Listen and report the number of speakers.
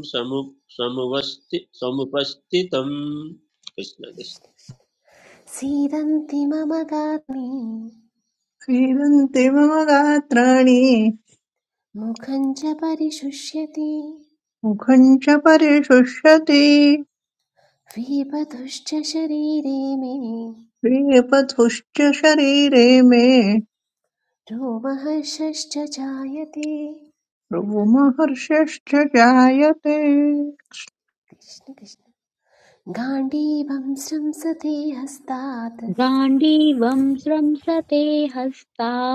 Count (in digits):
4